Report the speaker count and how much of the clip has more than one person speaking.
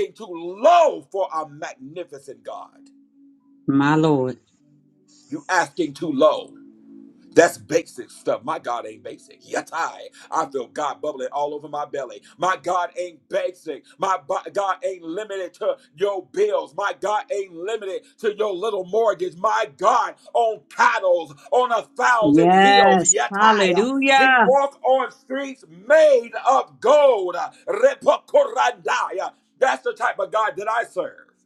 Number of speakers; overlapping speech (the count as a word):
two, about 7%